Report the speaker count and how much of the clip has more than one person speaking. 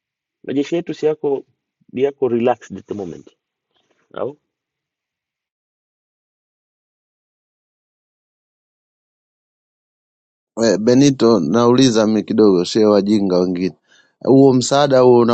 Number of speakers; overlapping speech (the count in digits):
2, no overlap